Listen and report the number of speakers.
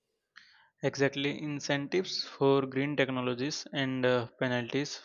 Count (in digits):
1